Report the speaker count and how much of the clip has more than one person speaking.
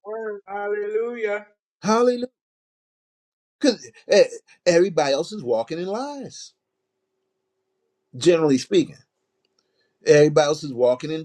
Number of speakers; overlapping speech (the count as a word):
two, no overlap